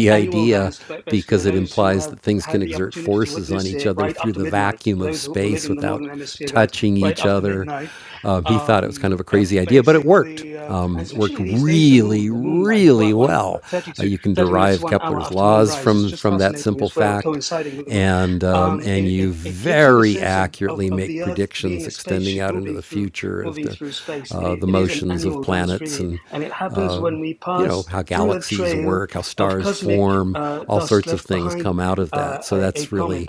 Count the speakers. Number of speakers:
2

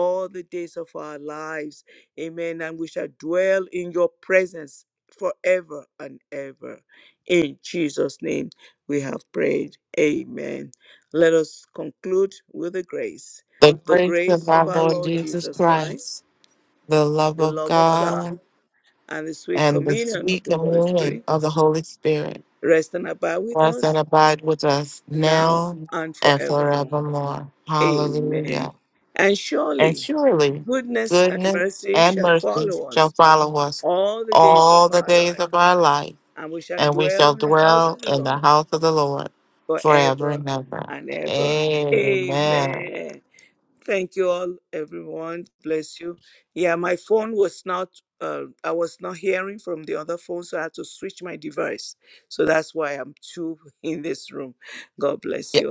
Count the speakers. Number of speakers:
2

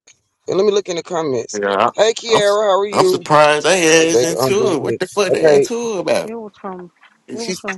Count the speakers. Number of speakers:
3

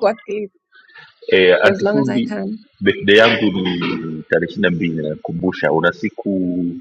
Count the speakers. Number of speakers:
2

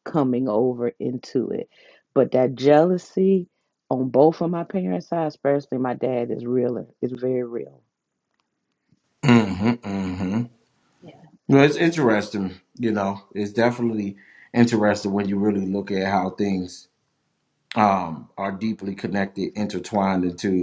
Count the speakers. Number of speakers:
2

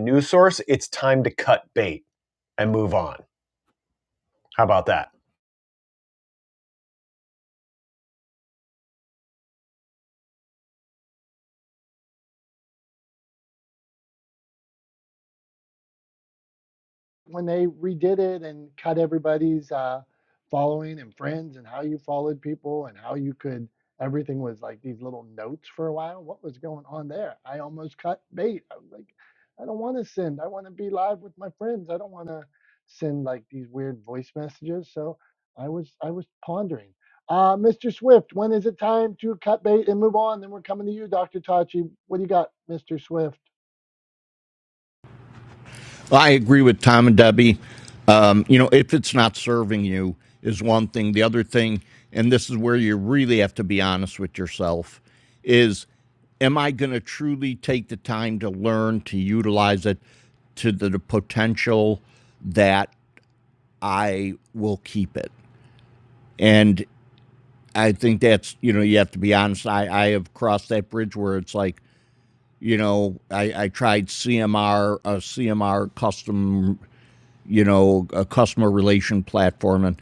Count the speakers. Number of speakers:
3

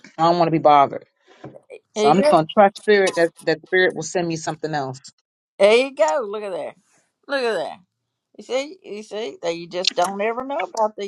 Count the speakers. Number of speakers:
2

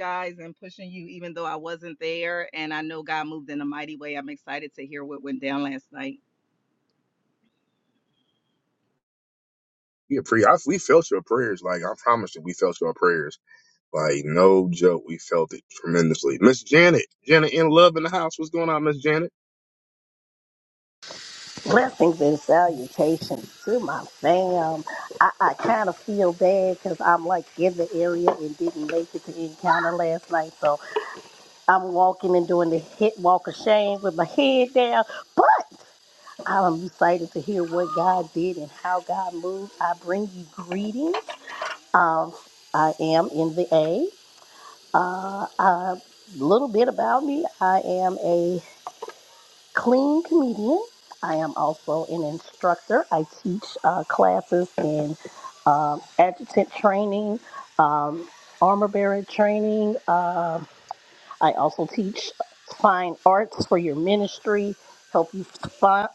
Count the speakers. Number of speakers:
3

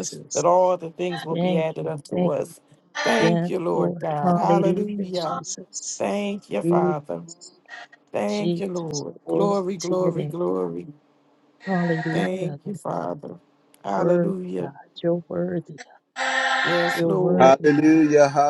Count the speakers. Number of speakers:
3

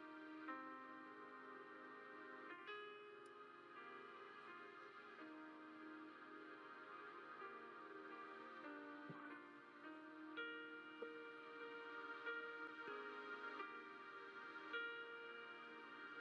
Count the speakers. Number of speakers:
0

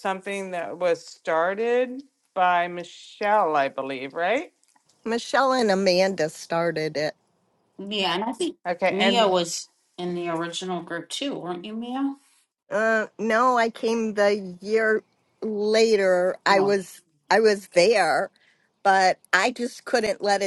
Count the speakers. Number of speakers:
3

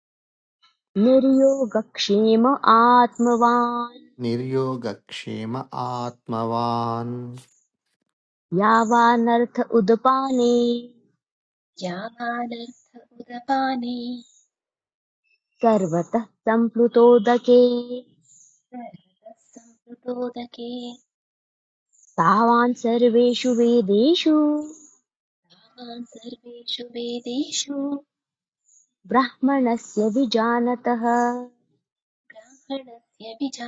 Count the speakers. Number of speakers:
3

